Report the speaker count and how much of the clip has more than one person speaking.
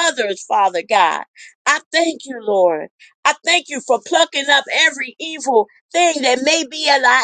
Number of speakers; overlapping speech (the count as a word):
one, no overlap